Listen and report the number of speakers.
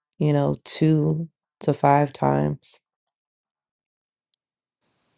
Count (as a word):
one